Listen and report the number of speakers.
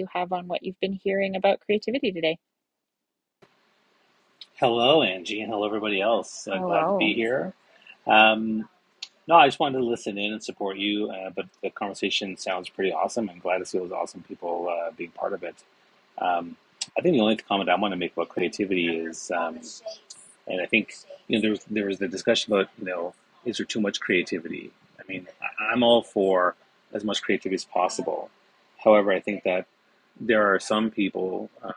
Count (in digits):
2